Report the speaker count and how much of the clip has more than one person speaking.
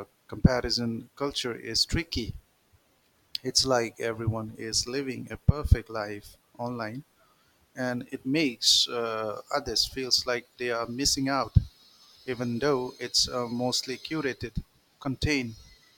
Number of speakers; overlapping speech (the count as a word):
one, no overlap